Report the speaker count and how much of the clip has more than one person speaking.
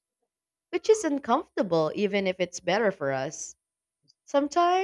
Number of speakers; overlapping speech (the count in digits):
1, no overlap